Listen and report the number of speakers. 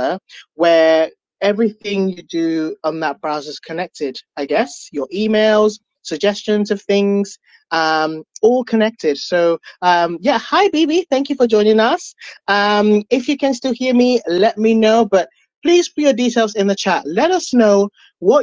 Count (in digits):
1